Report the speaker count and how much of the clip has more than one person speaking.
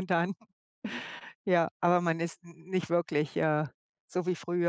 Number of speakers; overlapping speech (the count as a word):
one, no overlap